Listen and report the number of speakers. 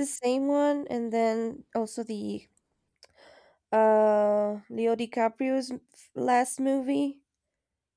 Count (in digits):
1